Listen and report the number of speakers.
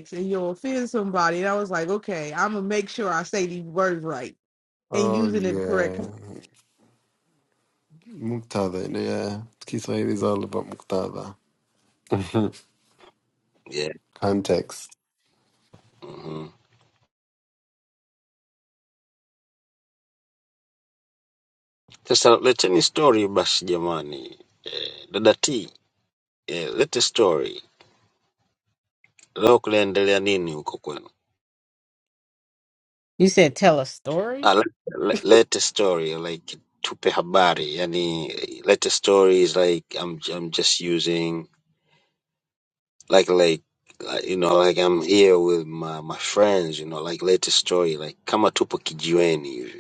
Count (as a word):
four